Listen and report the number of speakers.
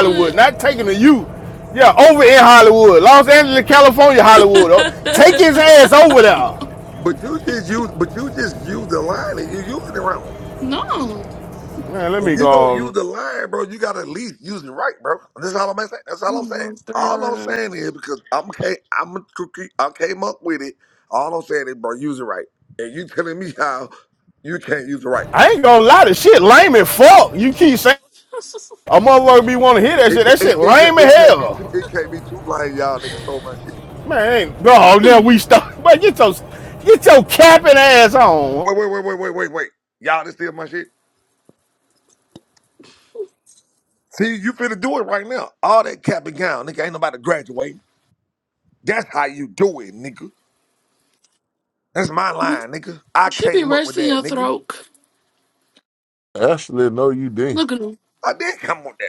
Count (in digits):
4